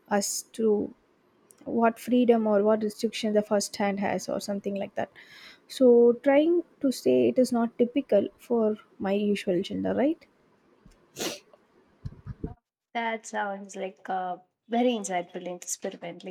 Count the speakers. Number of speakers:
2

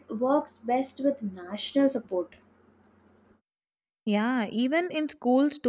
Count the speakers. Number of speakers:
2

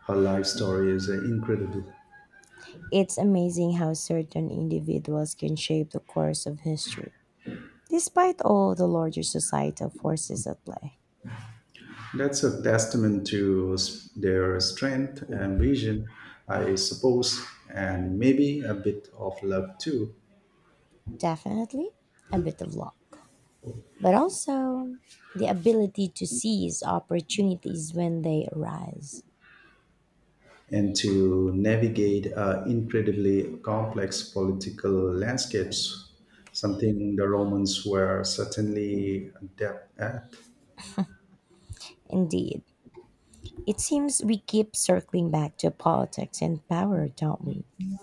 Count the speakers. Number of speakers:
2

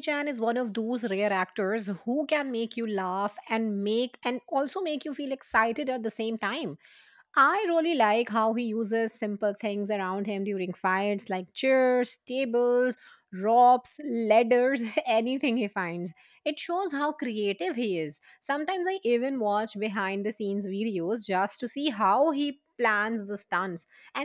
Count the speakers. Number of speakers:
1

